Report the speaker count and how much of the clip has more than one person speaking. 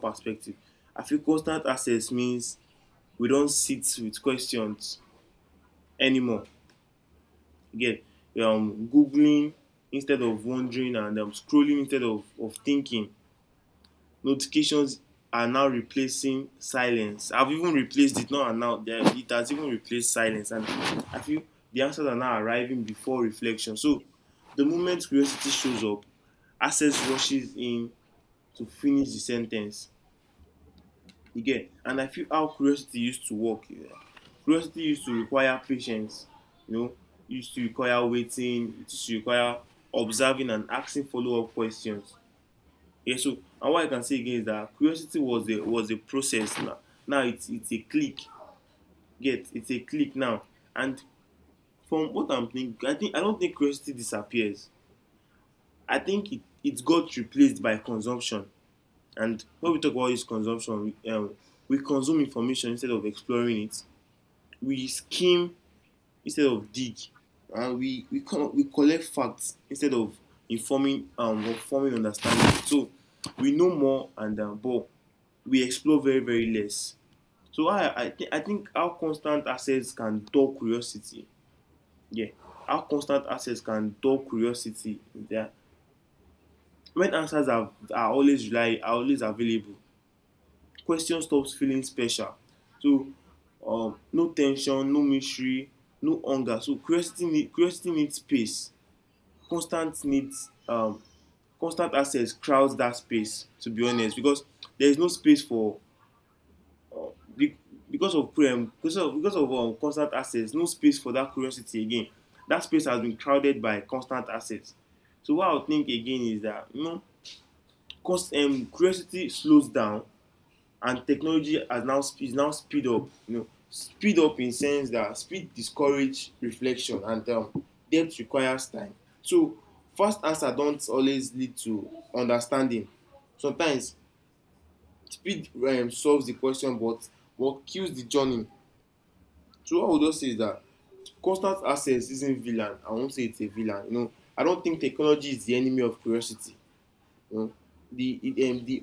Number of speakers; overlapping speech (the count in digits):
1, no overlap